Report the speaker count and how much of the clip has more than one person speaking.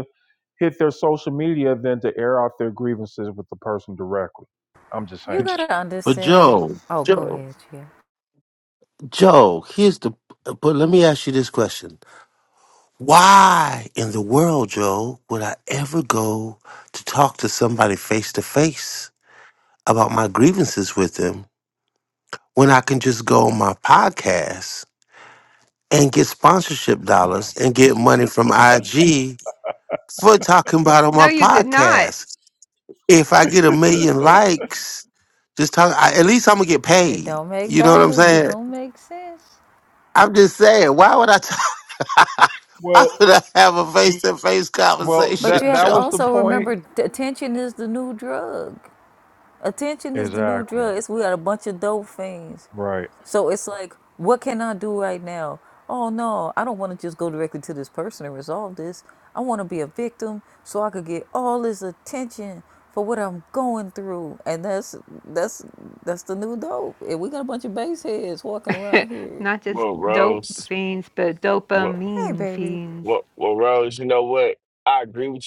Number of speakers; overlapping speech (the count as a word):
five, about 10%